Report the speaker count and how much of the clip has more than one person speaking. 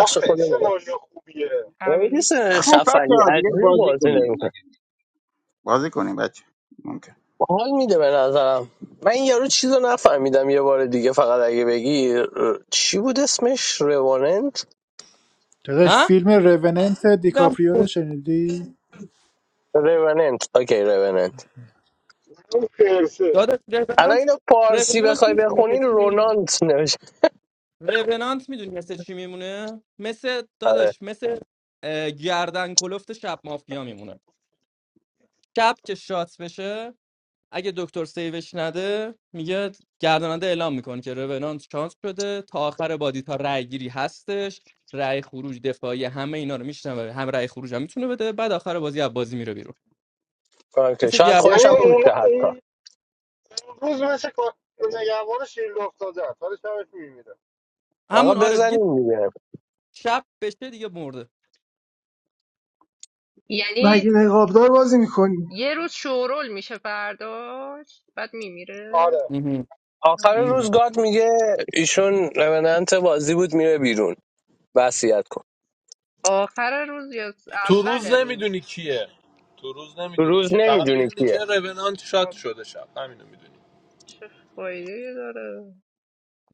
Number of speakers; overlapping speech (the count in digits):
8, about 13%